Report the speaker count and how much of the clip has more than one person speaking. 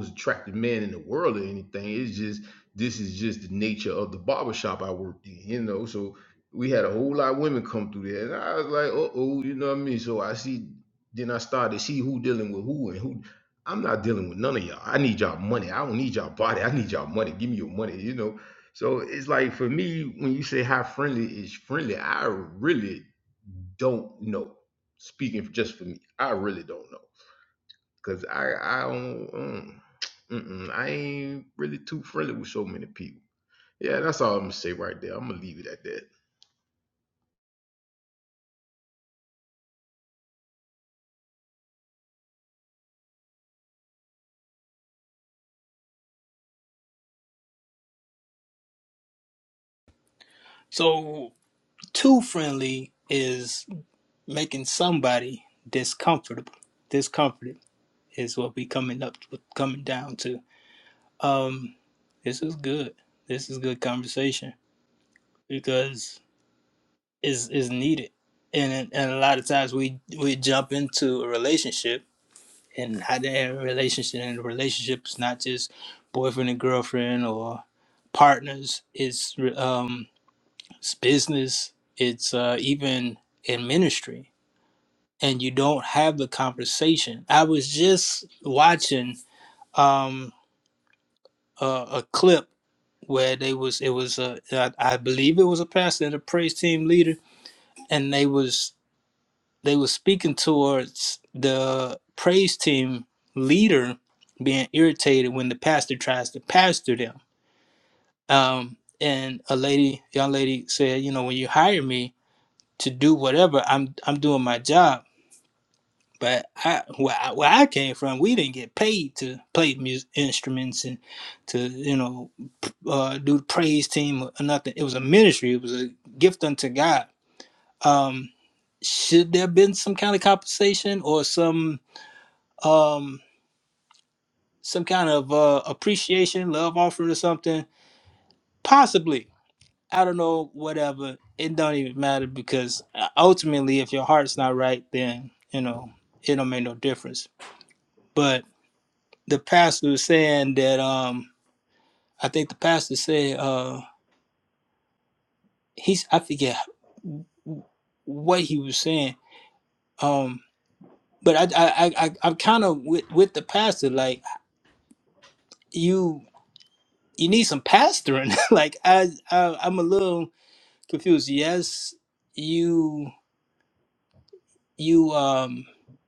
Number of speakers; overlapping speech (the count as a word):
two, no overlap